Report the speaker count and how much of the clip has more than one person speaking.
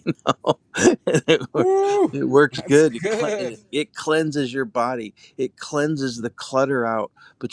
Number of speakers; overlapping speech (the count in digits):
2, about 10%